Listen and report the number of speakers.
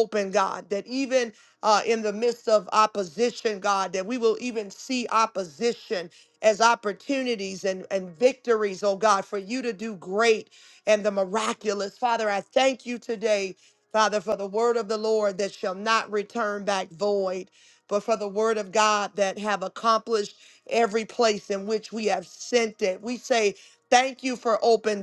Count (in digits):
1